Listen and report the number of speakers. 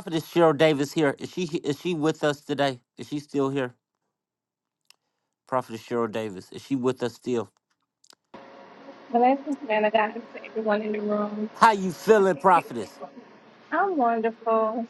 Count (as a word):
two